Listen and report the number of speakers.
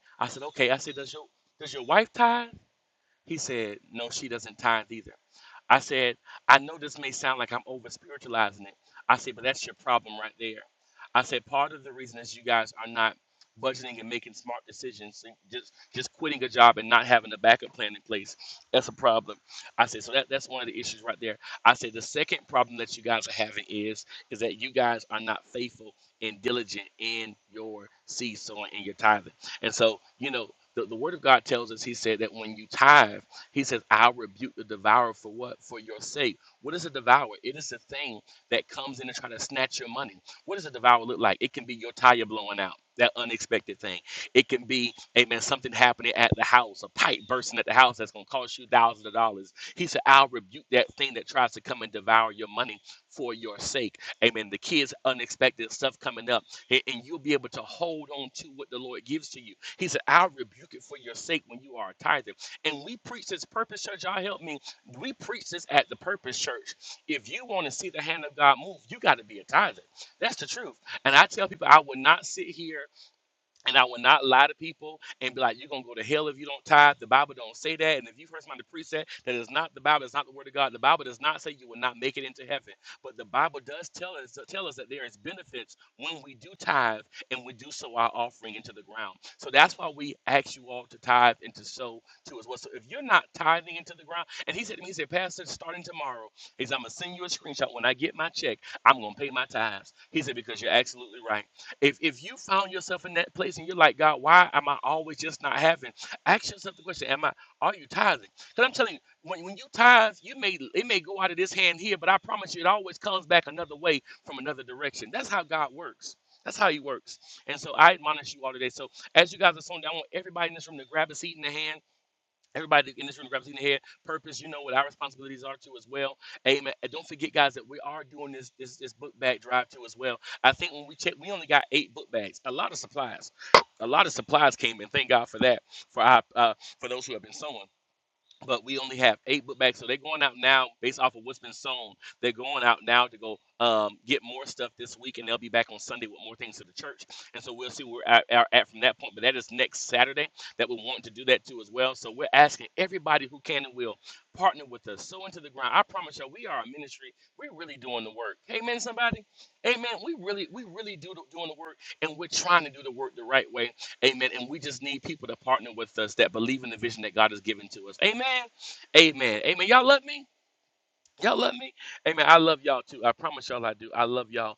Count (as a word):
one